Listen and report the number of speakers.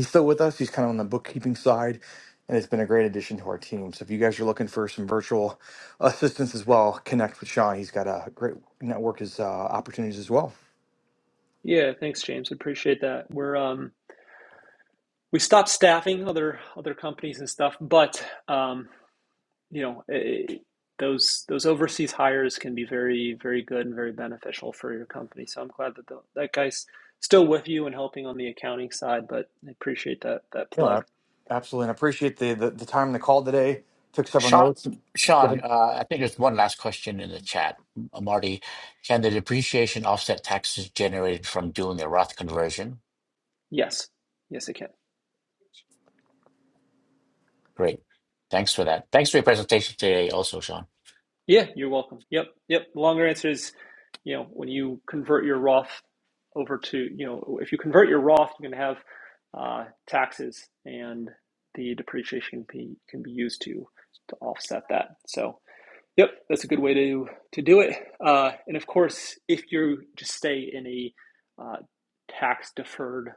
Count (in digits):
3